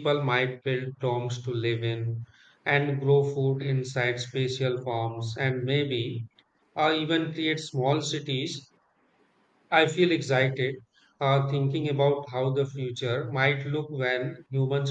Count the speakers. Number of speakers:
1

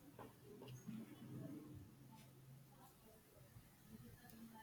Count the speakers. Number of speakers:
0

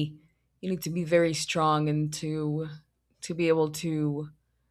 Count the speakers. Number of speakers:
1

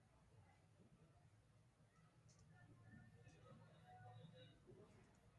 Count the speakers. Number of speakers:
0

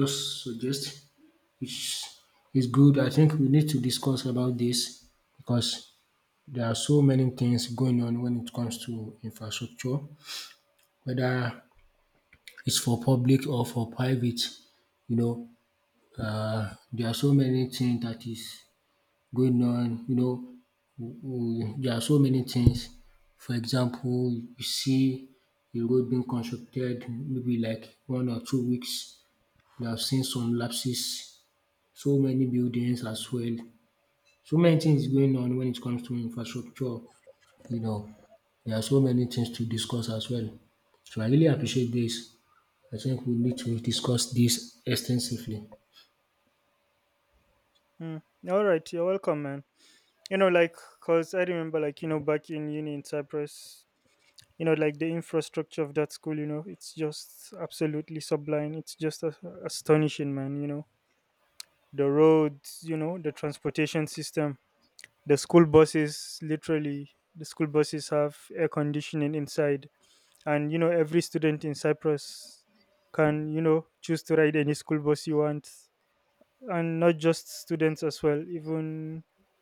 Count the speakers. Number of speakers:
2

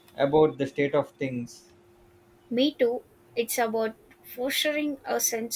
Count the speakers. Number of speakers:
2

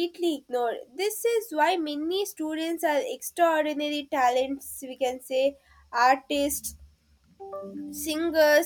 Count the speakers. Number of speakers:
1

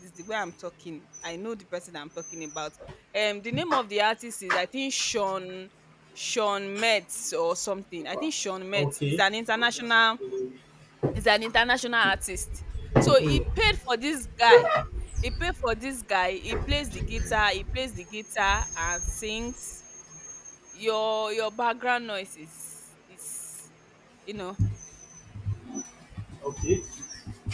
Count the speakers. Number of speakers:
2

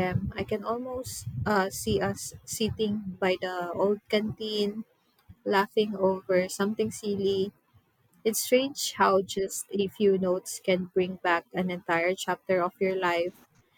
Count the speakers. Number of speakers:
1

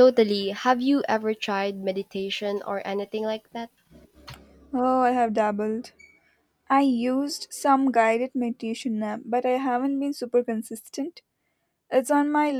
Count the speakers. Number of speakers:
2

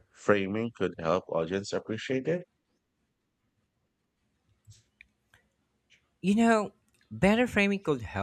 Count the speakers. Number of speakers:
2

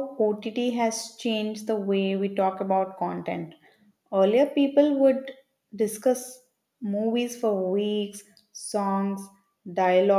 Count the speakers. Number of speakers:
1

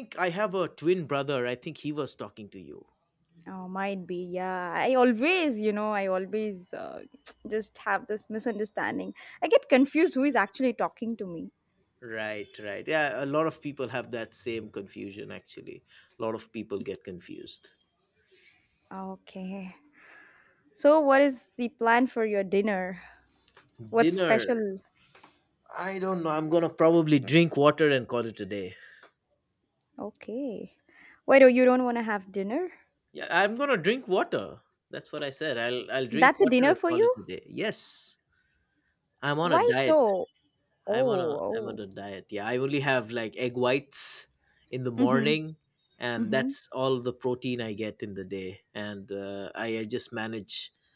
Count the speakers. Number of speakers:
2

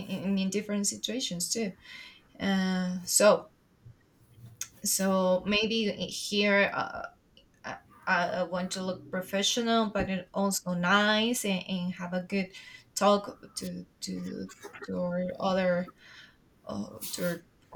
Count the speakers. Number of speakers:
1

